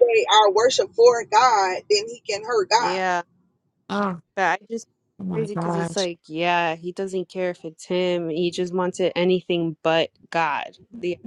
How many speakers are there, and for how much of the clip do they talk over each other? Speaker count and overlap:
3, about 8%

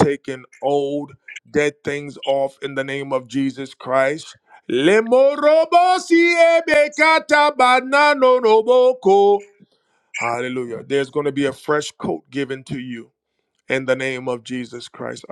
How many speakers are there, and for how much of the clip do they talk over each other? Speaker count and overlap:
1, no overlap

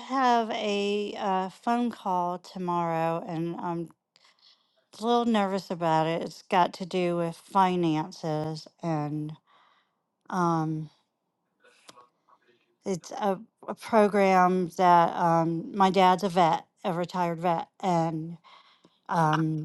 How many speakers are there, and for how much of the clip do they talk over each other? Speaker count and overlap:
1, no overlap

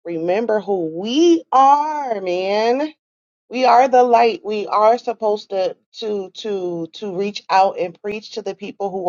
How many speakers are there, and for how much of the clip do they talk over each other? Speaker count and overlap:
1, no overlap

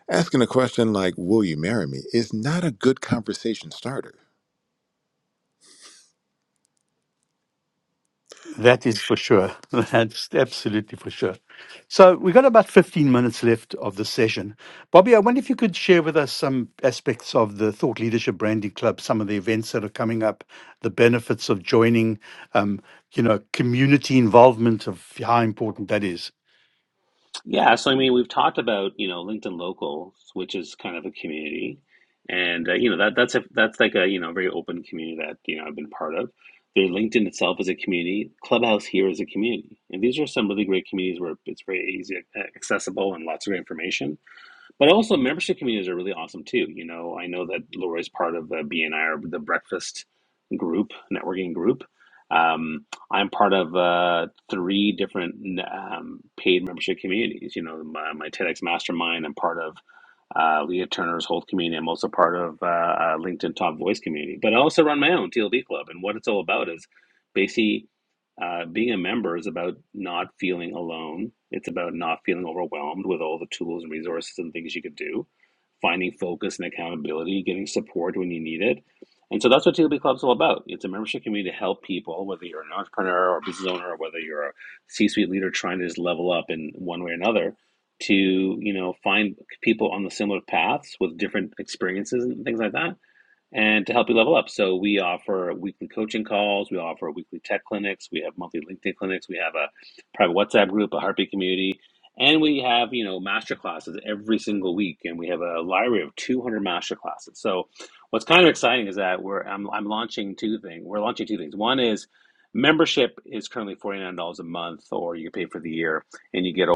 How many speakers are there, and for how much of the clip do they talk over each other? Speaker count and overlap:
3, no overlap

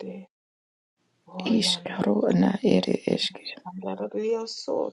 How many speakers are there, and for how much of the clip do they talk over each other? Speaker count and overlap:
2, about 14%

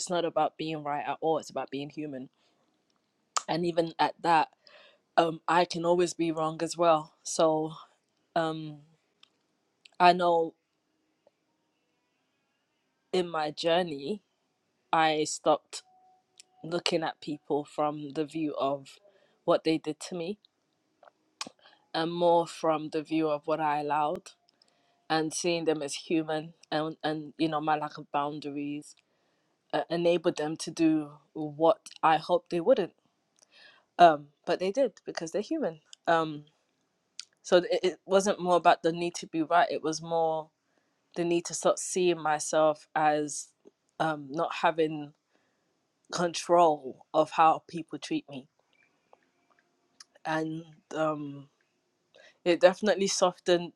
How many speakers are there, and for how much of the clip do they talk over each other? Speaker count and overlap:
1, no overlap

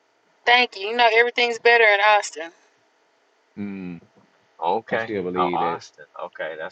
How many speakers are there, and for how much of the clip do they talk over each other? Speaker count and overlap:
3, about 13%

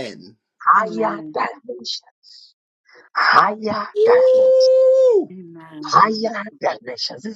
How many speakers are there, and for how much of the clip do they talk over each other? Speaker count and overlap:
3, about 23%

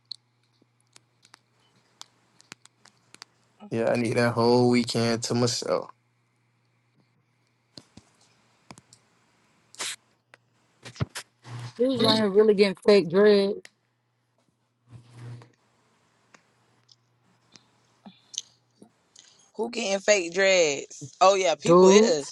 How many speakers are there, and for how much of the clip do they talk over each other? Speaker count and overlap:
3, about 2%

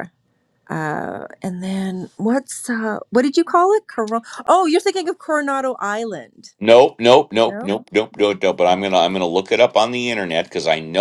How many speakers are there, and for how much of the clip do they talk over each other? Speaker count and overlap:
2, about 3%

